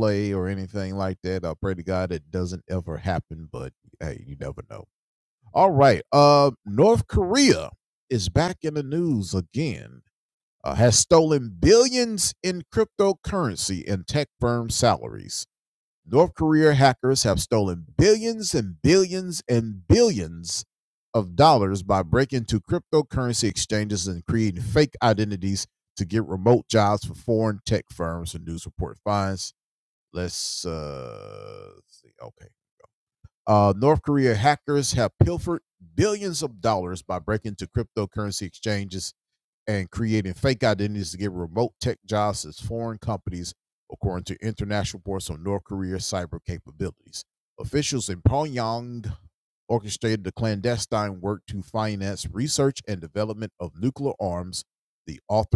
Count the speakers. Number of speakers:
1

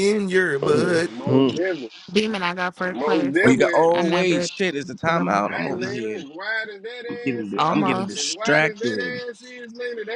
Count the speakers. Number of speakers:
4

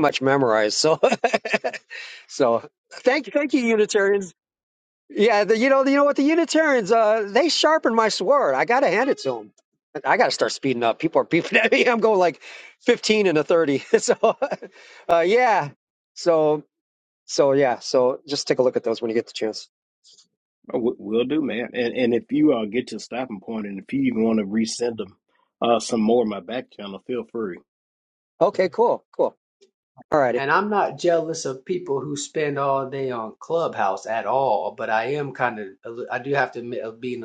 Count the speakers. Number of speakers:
3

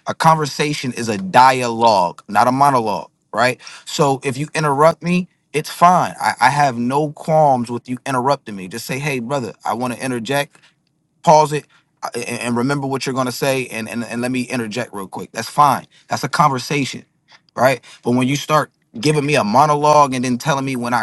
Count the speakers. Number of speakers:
1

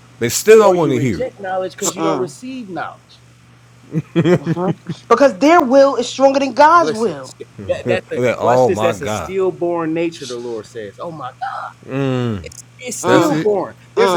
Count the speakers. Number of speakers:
3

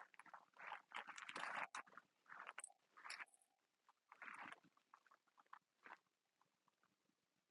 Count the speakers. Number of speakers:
0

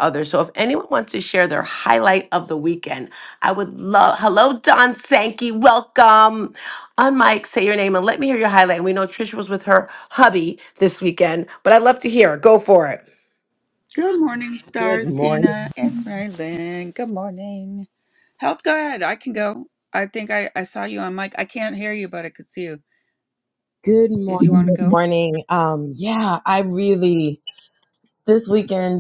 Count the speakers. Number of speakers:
3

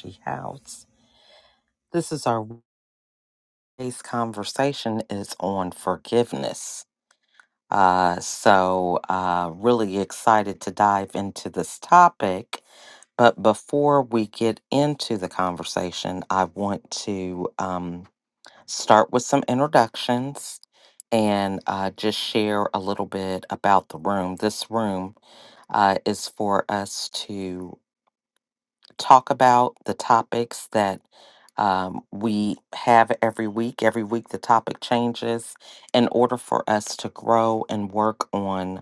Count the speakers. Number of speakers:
1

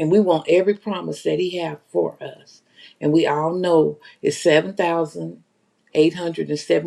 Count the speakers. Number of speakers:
1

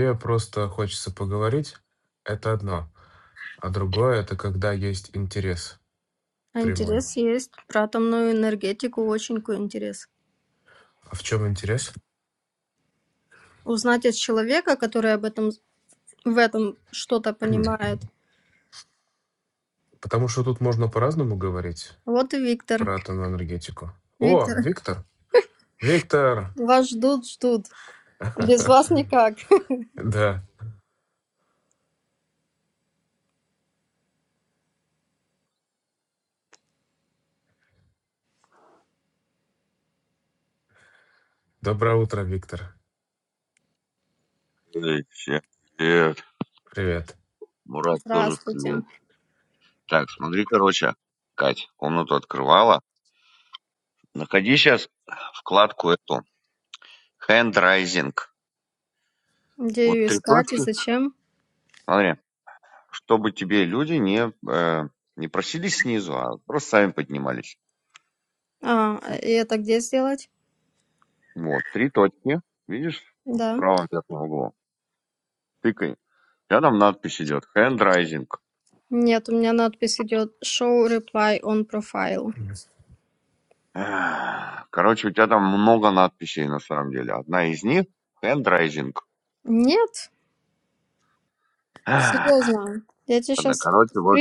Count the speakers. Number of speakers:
3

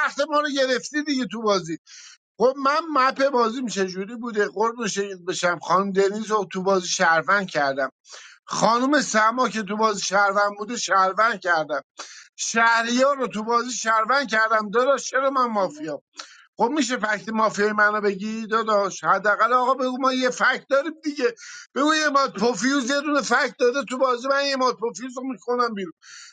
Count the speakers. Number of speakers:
1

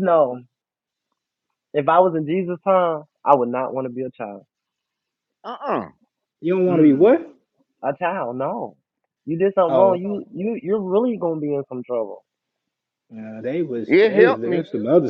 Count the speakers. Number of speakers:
3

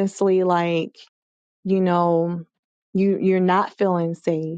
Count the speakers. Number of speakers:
1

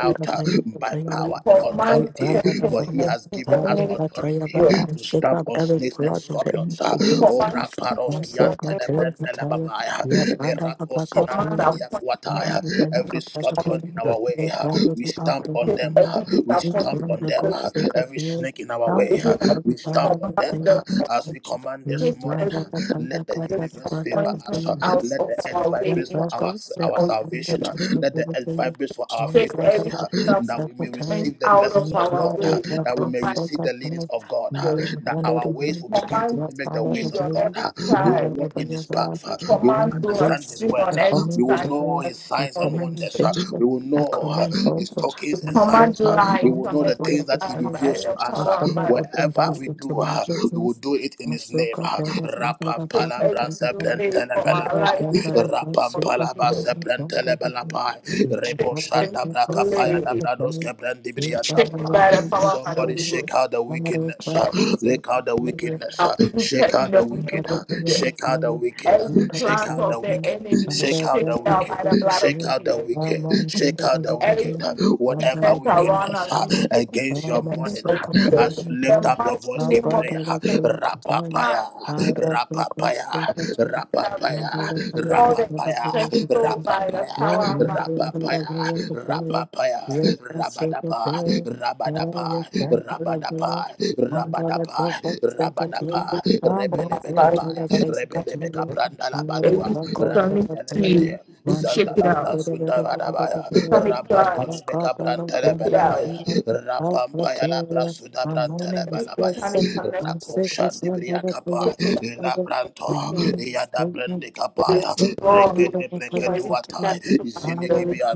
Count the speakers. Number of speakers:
3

